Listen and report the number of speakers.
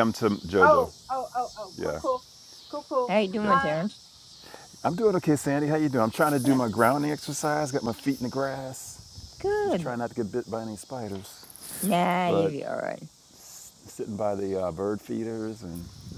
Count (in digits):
3